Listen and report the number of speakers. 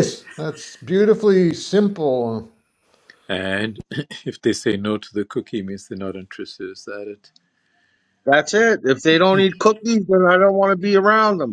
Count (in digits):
3